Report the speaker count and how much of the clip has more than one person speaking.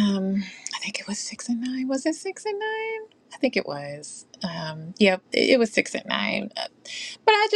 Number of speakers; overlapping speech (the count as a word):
one, no overlap